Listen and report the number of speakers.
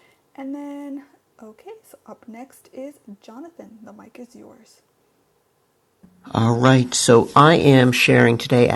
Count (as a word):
two